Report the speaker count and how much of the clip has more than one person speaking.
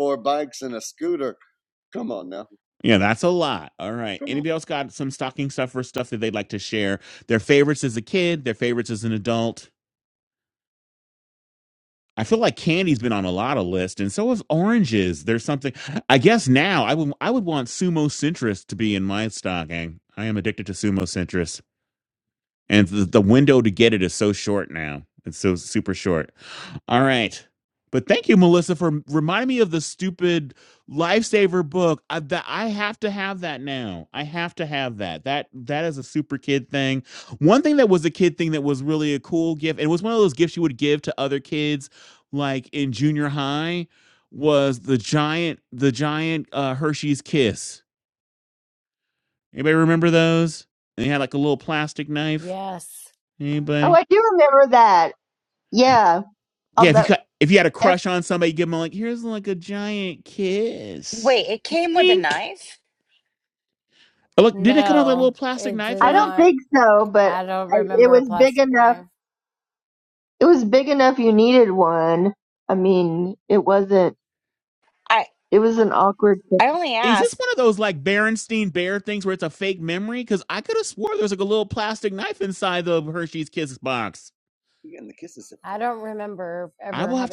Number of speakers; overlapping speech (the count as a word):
five, about 7%